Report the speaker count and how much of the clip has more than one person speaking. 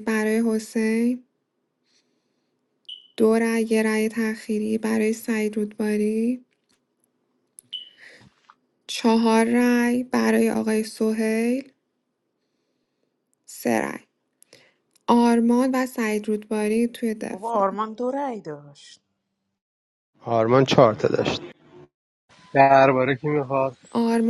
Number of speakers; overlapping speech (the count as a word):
four, about 1%